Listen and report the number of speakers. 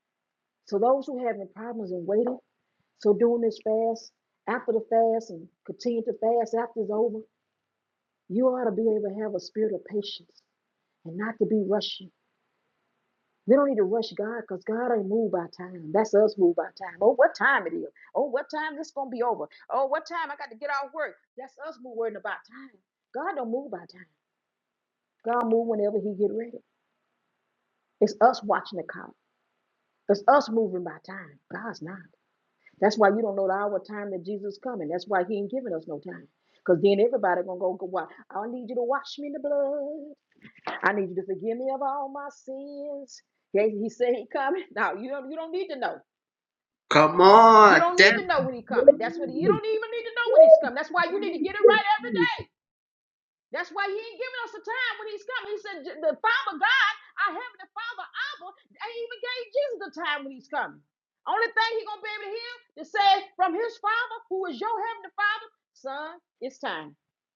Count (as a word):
two